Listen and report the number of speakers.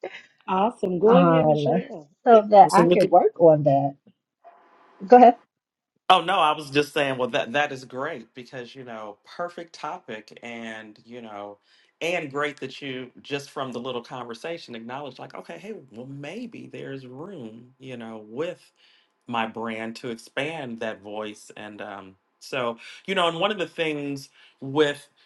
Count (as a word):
three